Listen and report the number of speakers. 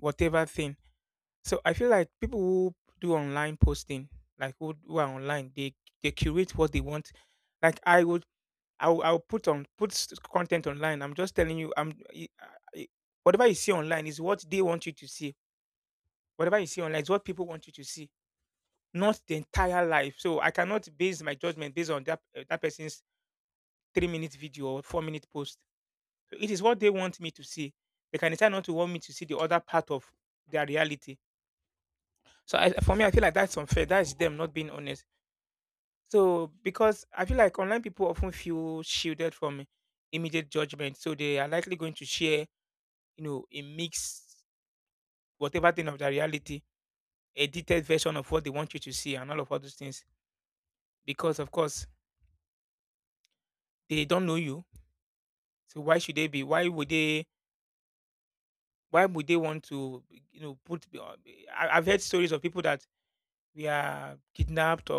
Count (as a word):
one